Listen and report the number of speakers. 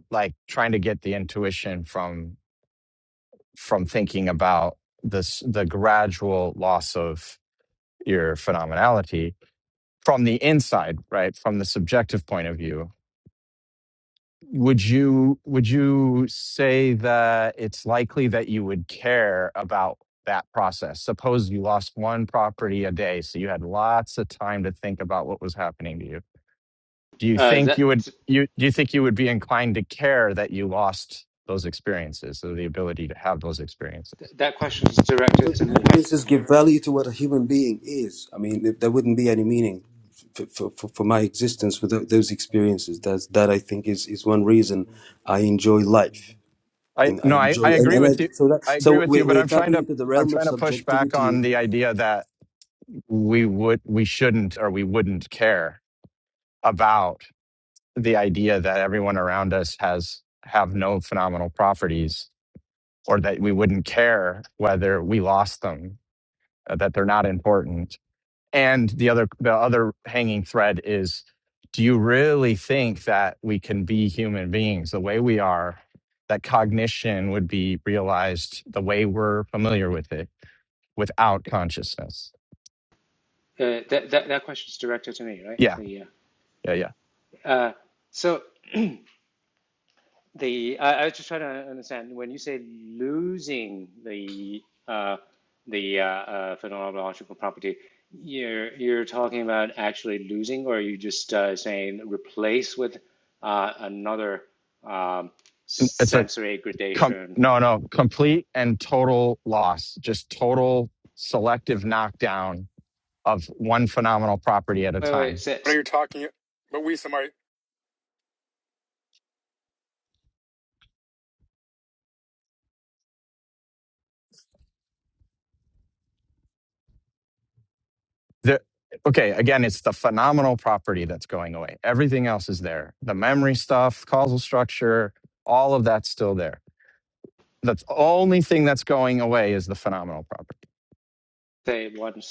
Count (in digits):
4